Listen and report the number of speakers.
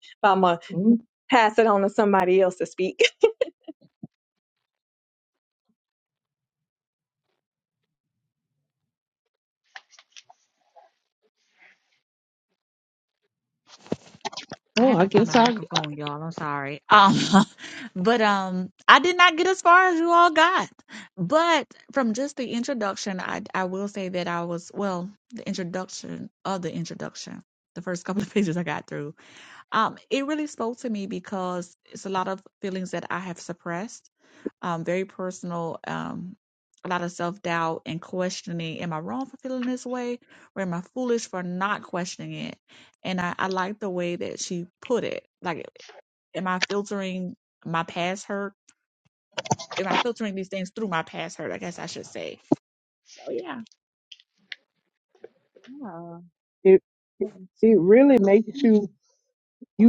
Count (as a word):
three